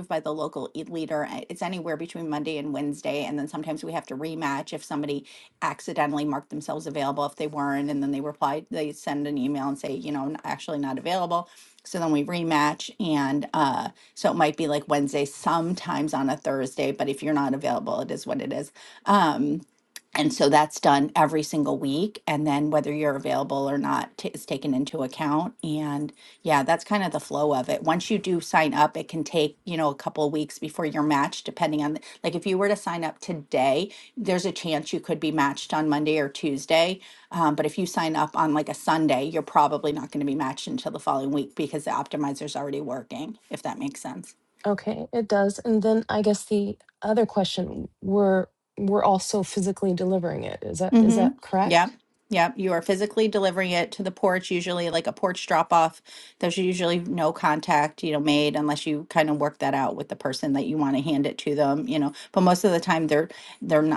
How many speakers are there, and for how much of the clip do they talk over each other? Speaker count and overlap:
two, about 2%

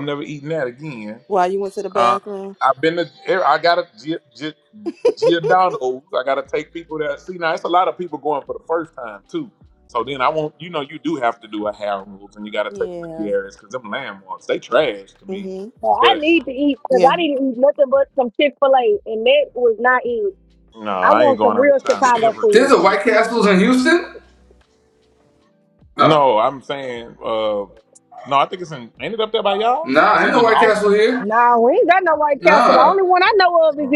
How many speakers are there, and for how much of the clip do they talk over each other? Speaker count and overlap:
four, about 16%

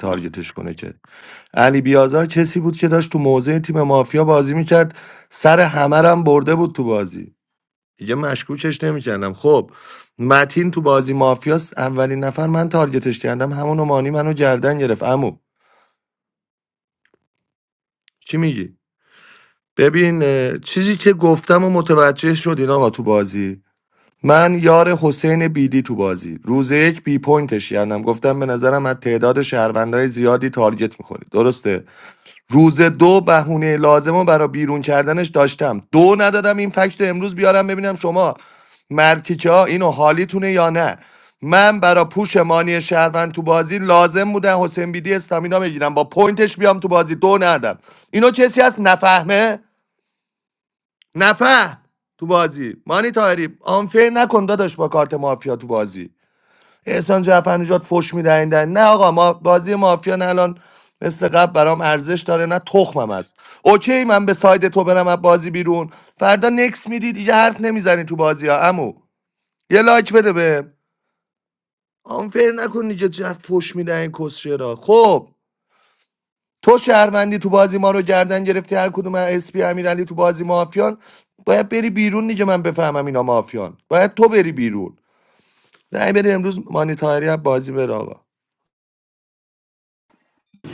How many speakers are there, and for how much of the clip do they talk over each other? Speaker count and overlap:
one, no overlap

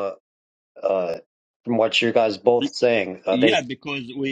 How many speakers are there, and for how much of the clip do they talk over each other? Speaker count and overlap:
two, about 9%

